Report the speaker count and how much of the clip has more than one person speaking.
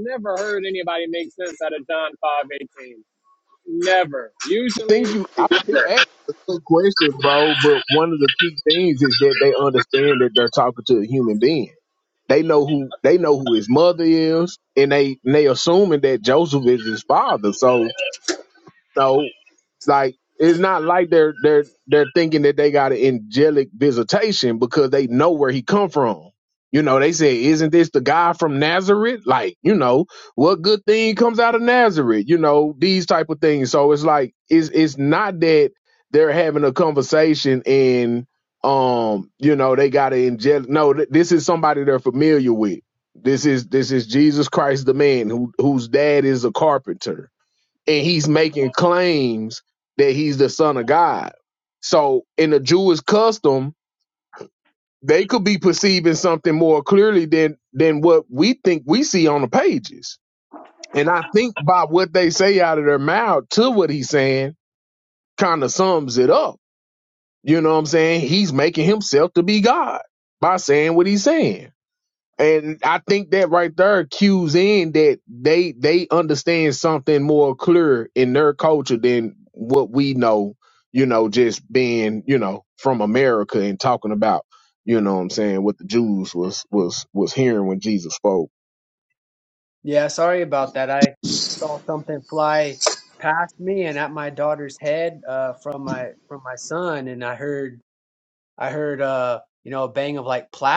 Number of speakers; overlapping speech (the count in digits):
3, about 1%